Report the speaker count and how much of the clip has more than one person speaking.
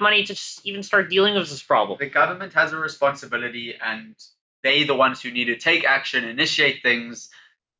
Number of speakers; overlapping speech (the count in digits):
2, no overlap